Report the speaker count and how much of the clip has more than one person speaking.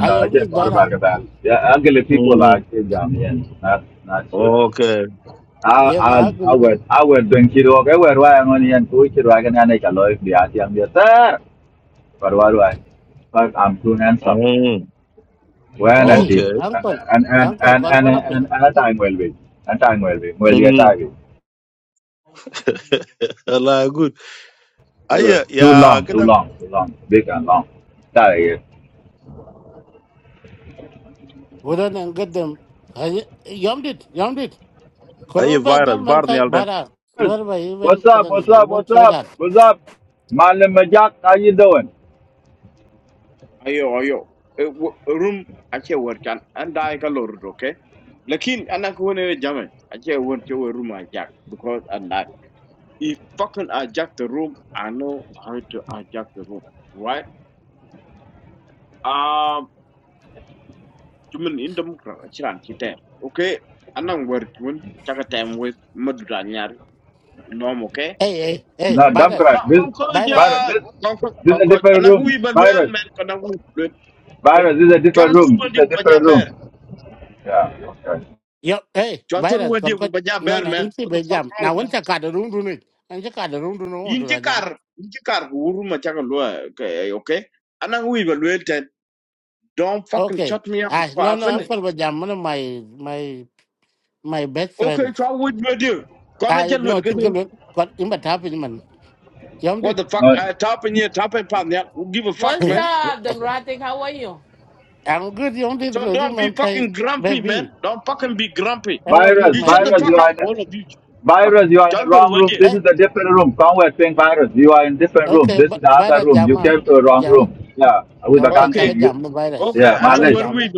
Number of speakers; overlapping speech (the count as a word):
five, about 22%